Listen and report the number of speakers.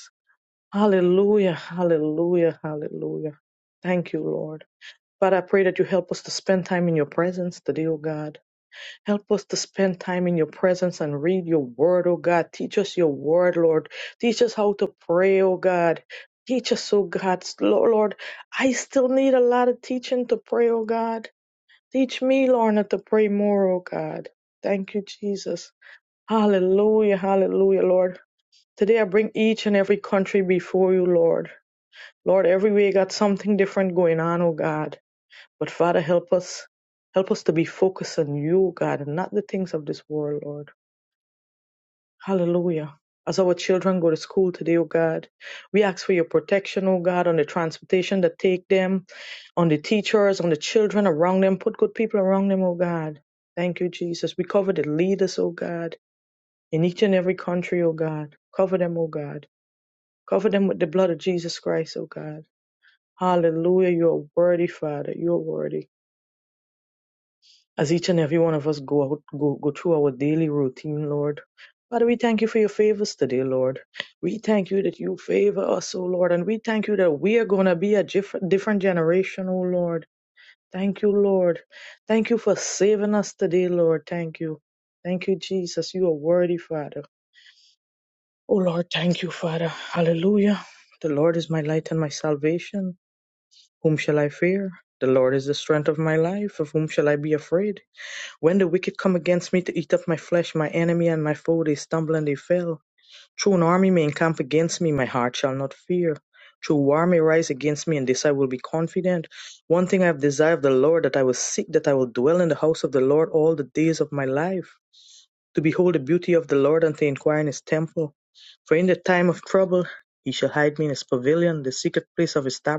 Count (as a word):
one